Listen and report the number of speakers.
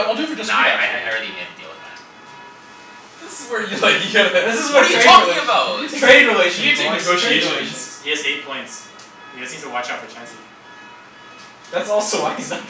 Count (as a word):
four